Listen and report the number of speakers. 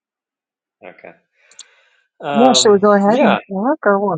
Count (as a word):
two